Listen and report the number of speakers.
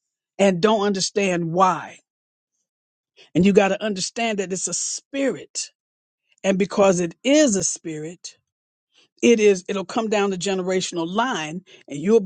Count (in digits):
1